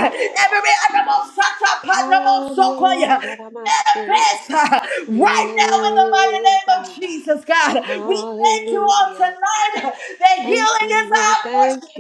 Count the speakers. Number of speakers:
2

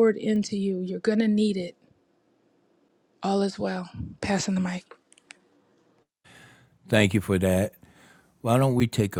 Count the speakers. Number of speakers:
2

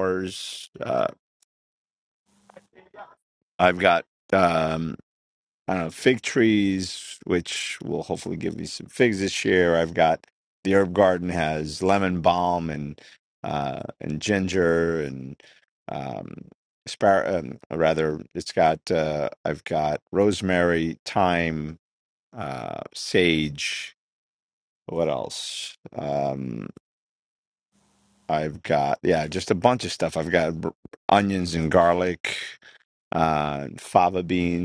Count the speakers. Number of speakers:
1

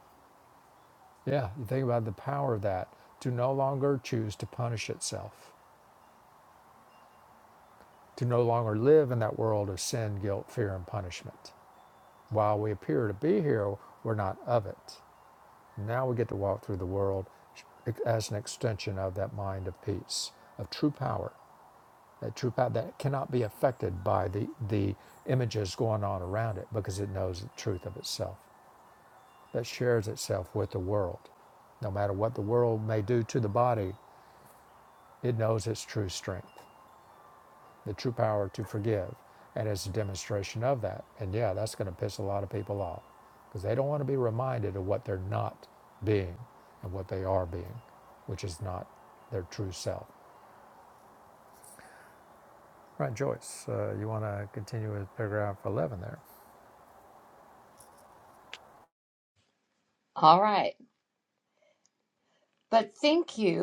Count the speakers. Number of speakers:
2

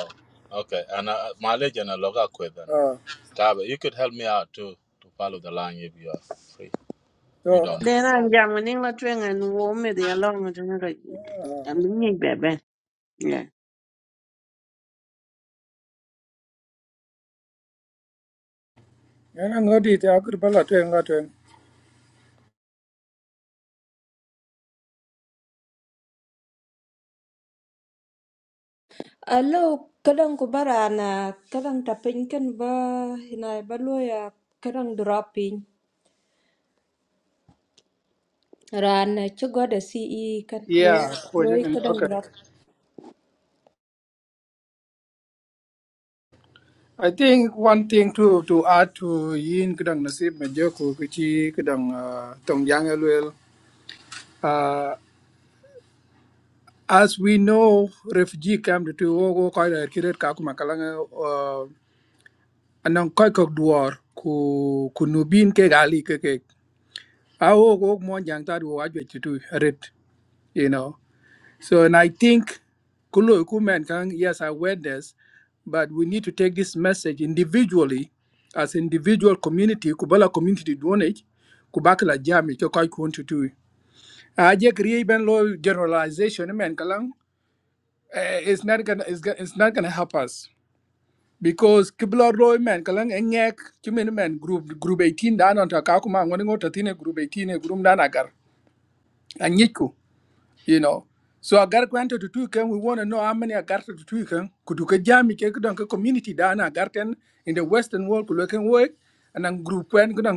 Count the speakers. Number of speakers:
4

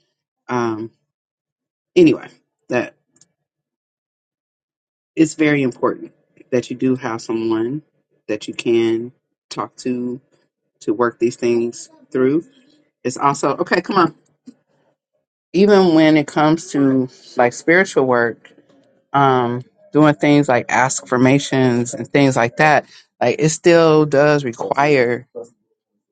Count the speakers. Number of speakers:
1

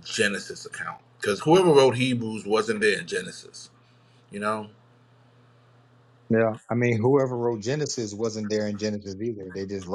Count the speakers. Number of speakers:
2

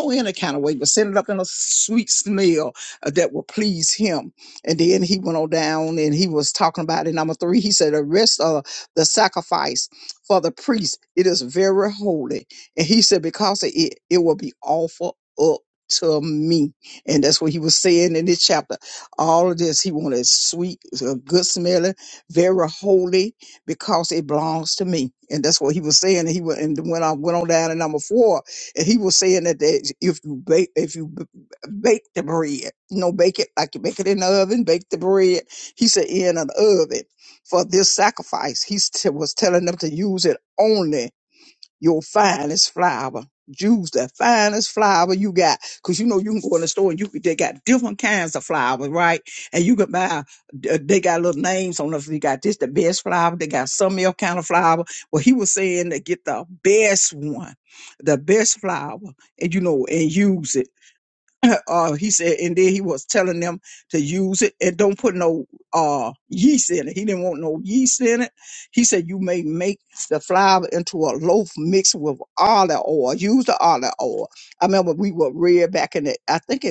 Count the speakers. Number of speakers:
1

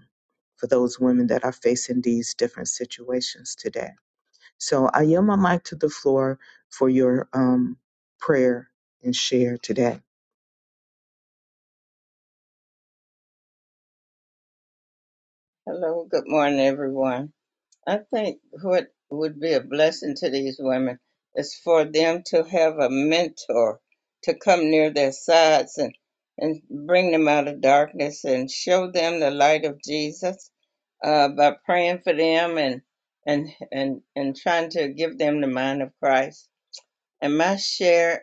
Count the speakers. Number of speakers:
2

